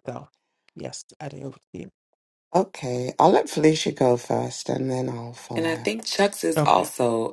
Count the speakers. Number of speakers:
3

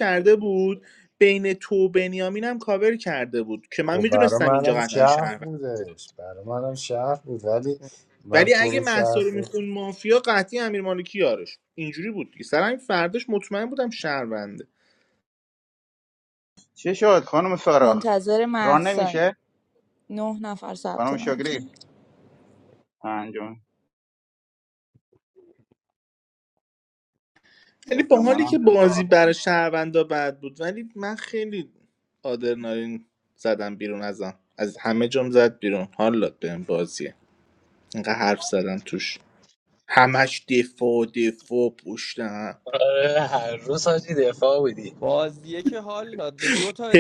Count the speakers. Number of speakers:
6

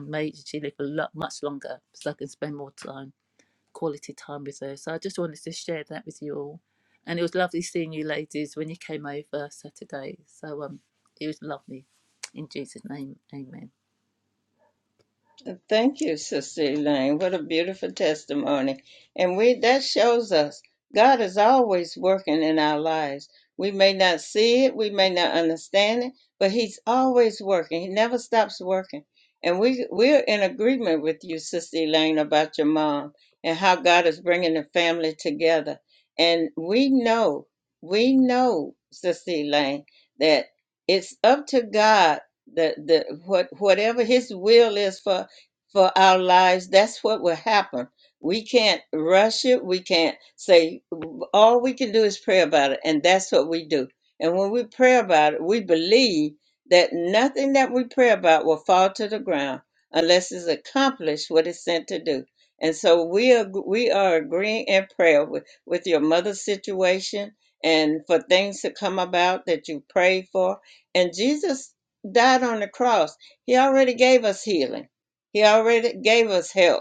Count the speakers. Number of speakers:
2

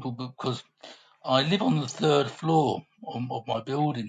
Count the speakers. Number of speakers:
1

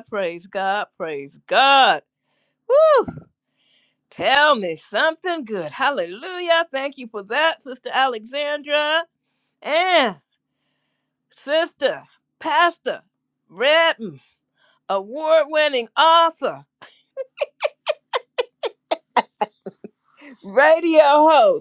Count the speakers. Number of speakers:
1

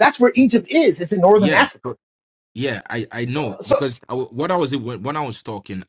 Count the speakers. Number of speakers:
2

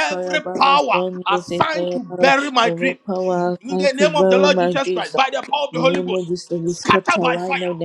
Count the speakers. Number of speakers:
2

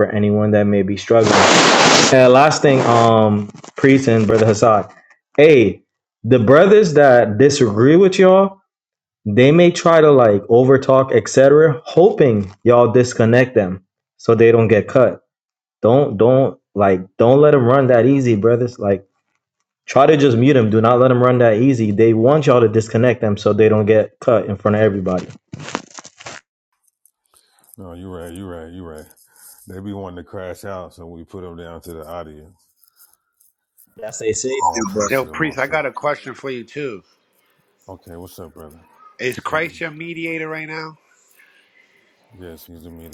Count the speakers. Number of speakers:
3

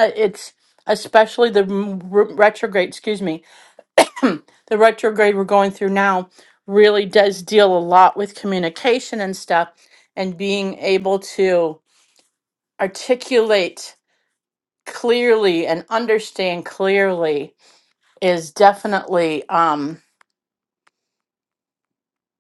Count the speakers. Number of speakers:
1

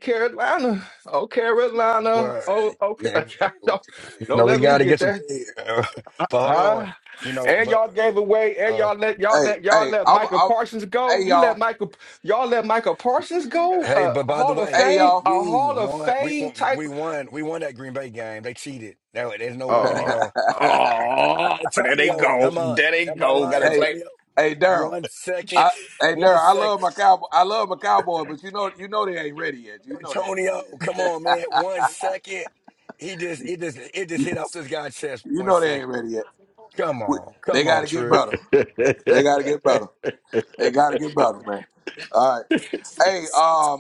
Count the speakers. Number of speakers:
3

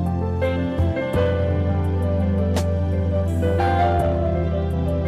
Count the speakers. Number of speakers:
0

